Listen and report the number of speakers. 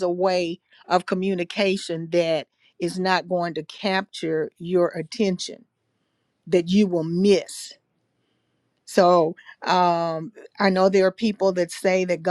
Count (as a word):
one